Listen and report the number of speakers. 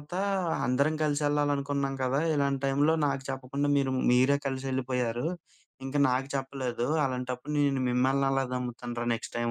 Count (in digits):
1